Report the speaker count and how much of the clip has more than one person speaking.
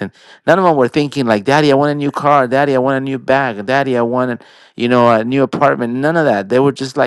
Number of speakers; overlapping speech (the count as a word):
one, no overlap